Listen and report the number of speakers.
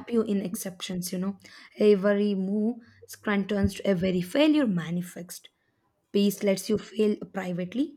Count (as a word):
one